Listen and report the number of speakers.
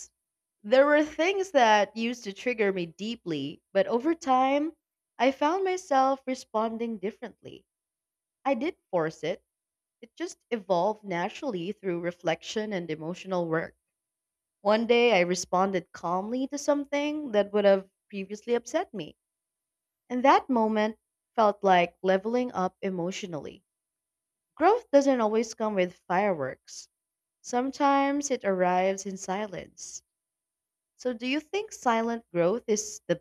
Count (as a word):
one